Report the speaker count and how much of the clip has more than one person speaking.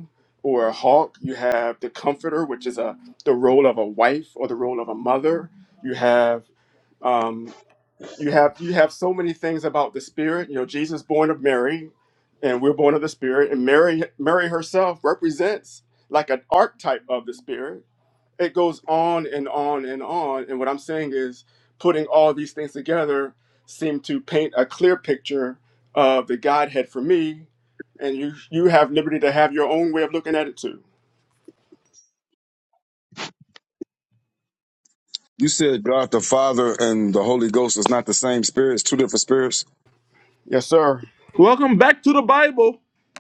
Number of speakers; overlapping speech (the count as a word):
three, no overlap